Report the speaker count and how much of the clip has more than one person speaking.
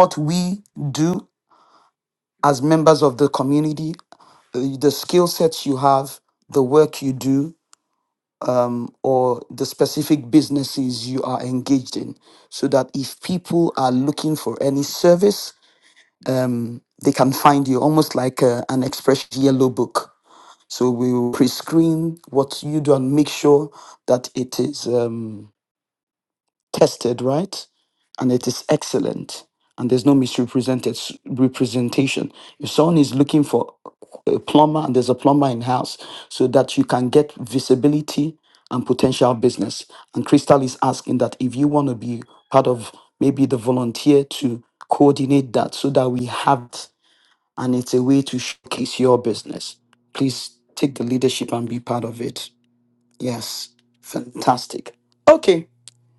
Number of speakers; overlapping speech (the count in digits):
1, no overlap